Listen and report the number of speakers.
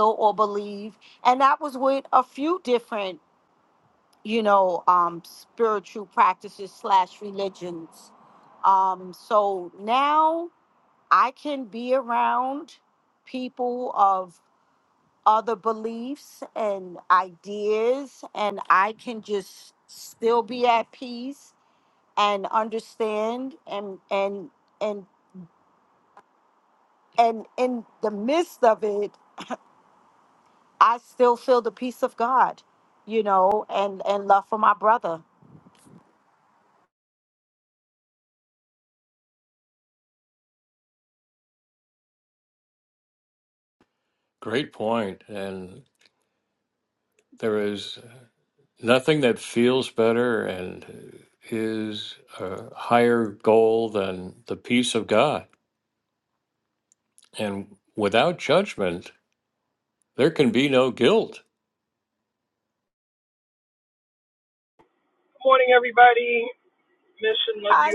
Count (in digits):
3